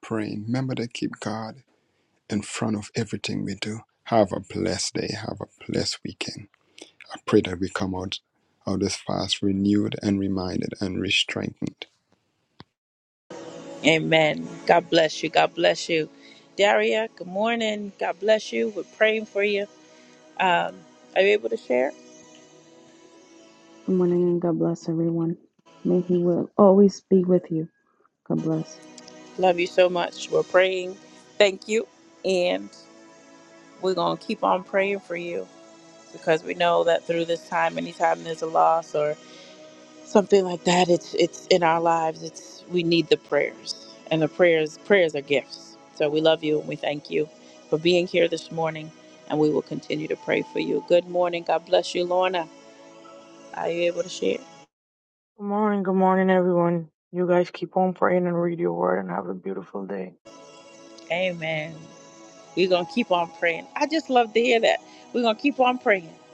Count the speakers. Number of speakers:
4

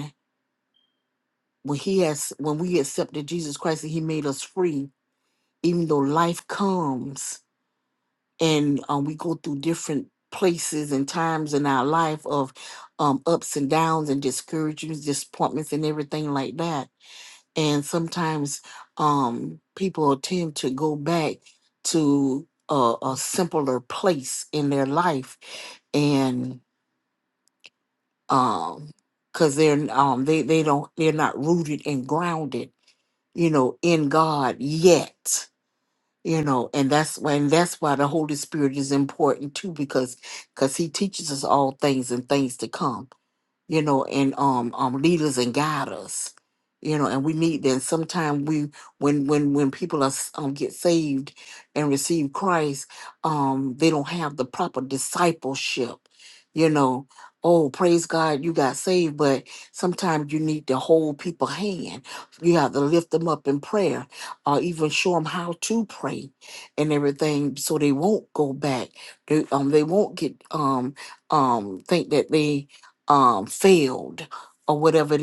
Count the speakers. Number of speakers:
1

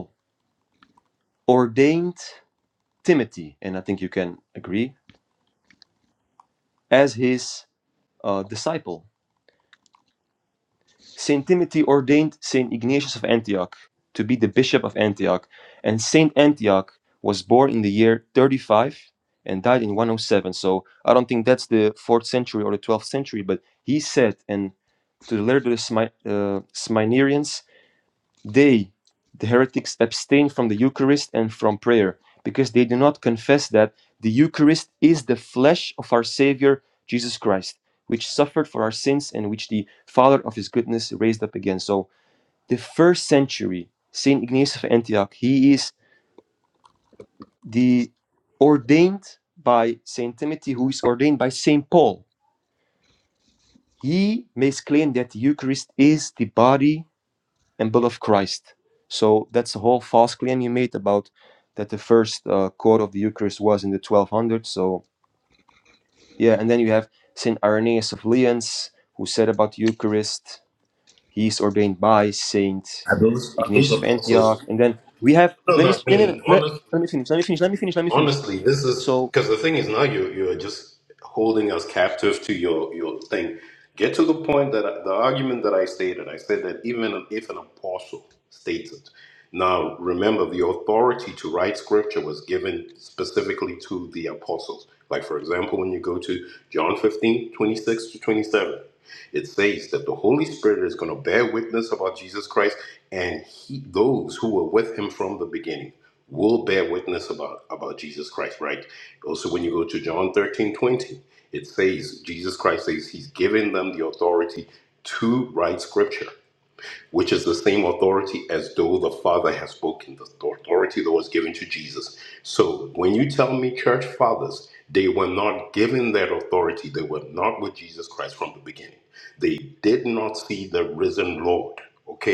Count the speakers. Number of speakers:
2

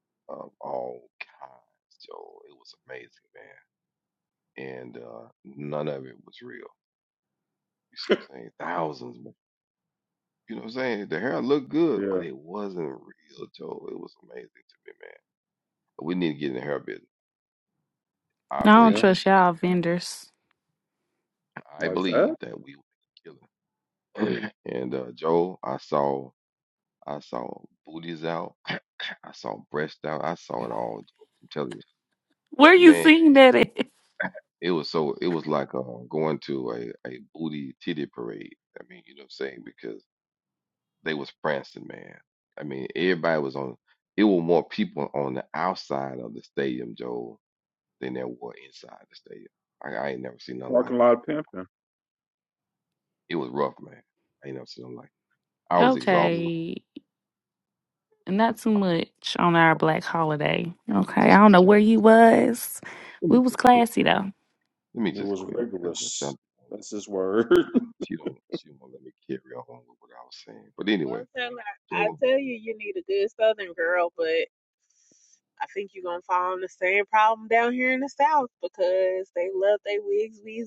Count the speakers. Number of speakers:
4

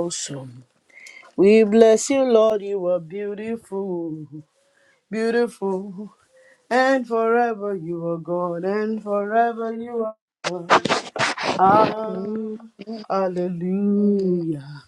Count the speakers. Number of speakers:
2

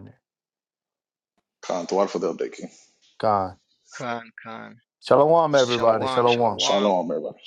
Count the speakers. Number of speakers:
3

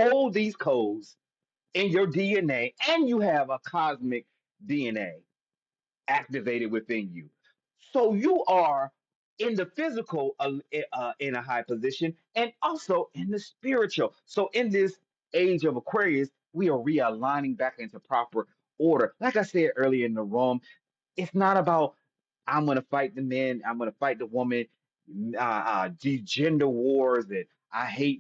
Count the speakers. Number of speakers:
1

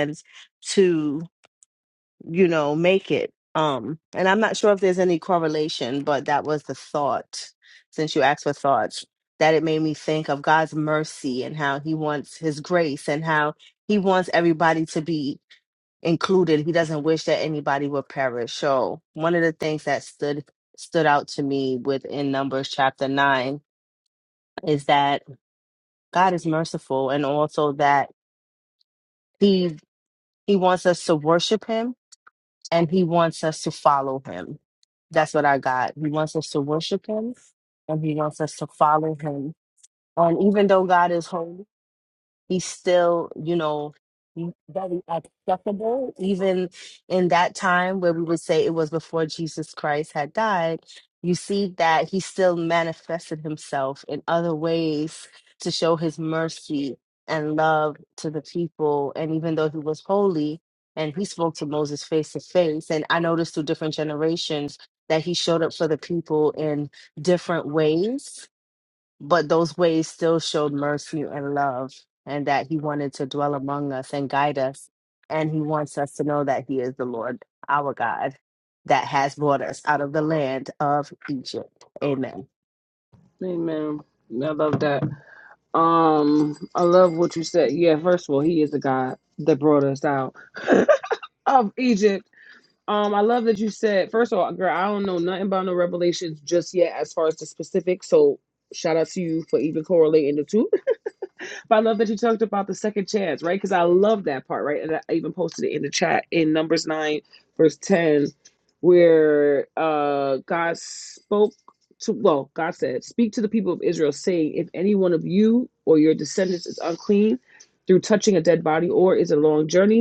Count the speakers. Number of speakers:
2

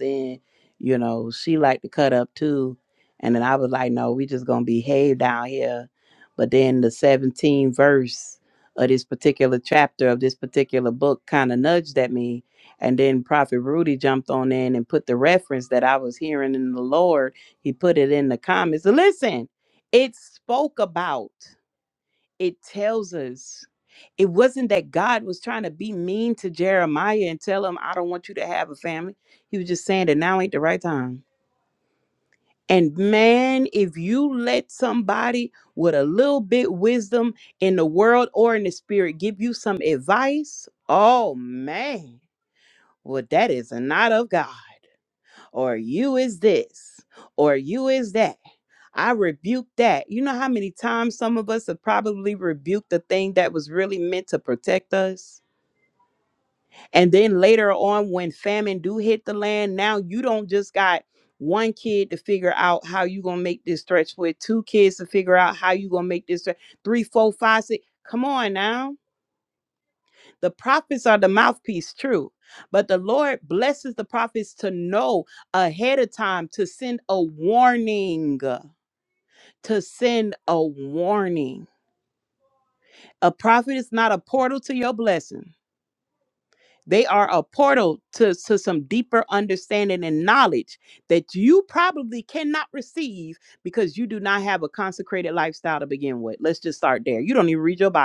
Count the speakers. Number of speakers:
1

